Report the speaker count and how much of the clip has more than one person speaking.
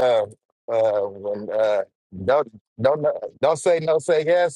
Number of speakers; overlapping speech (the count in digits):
1, no overlap